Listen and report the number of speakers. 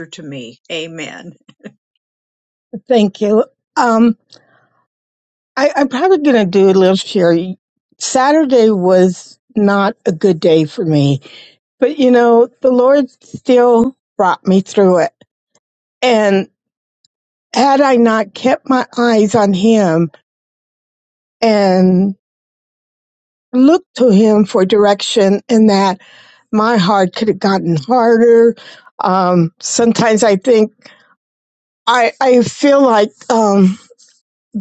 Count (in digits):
2